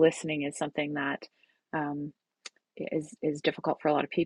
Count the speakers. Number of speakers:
one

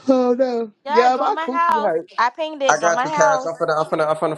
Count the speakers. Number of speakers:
three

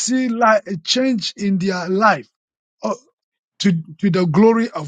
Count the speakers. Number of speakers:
one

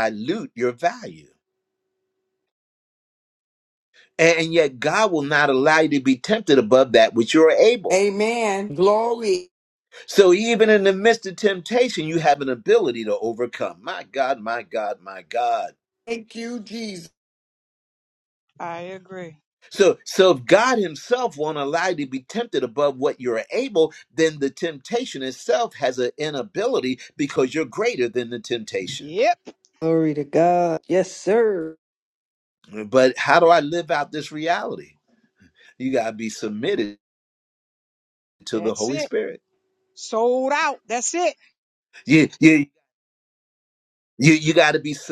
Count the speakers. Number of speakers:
four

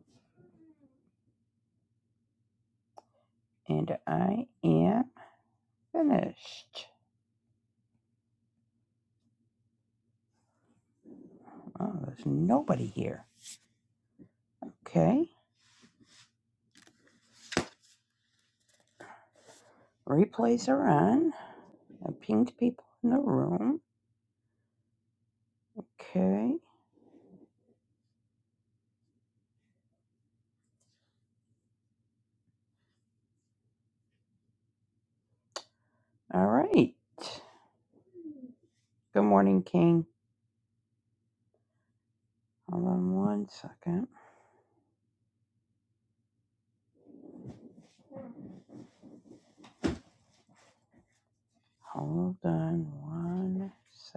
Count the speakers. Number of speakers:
one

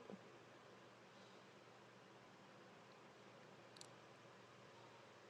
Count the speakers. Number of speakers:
zero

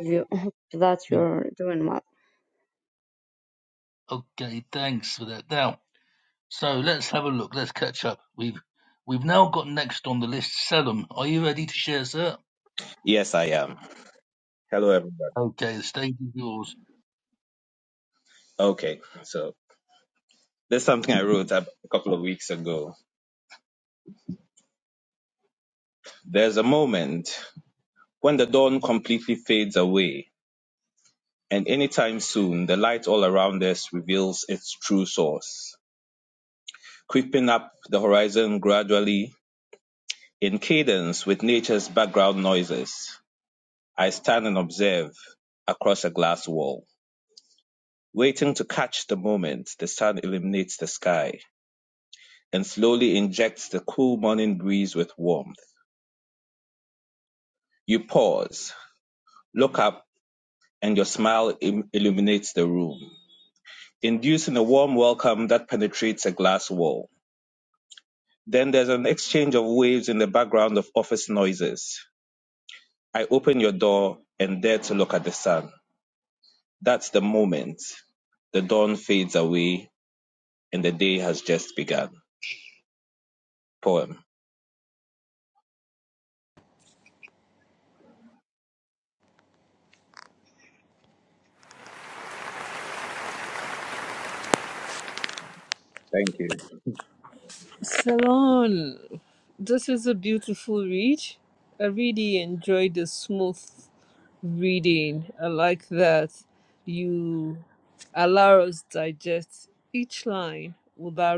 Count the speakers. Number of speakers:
four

